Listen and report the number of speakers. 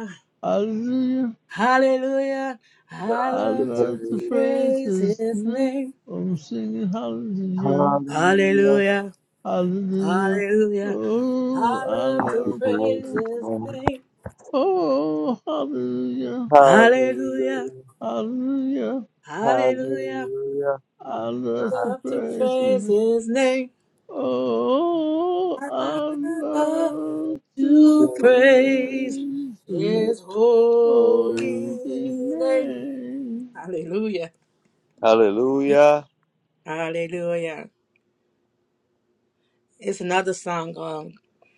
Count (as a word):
three